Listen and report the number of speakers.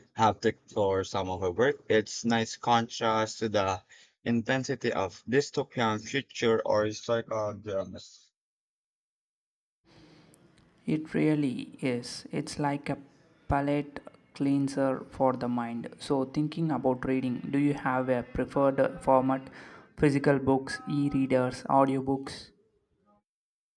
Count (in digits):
2